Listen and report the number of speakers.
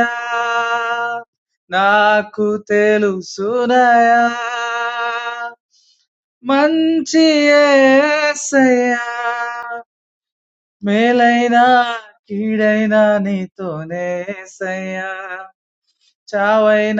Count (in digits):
1